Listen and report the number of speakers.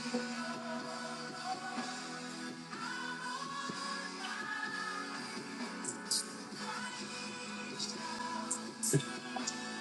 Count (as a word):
zero